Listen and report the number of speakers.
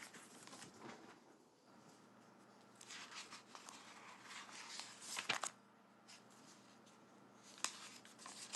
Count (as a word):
zero